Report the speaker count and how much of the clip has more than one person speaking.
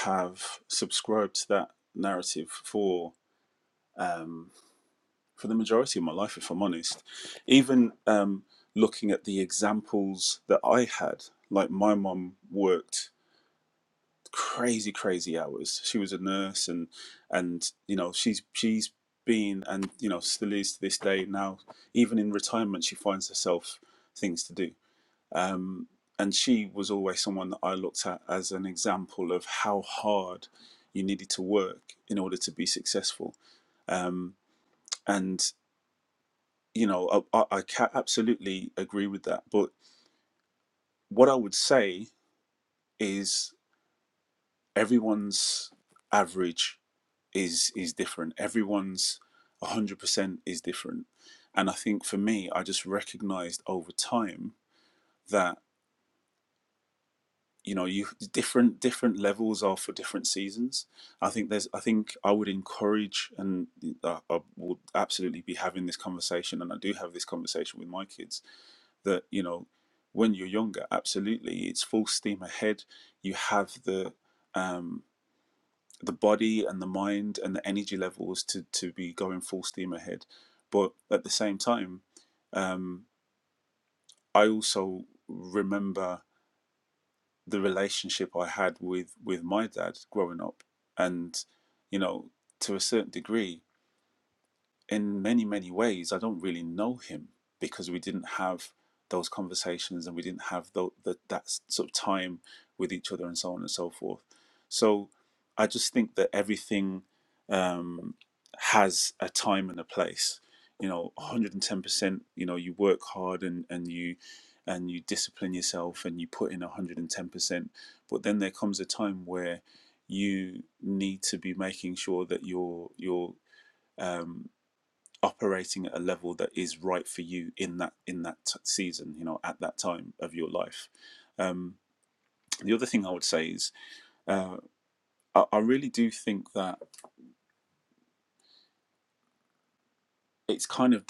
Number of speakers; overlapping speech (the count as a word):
one, no overlap